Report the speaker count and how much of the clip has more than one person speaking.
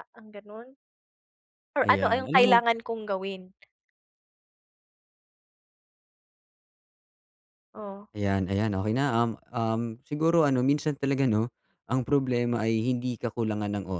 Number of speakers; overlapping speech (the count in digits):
2, about 6%